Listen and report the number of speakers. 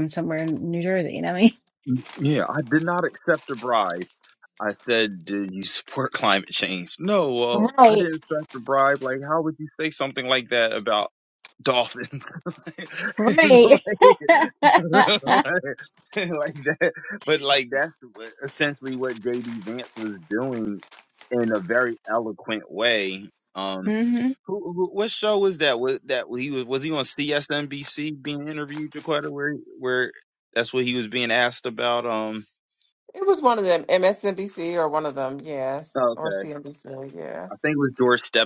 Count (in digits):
3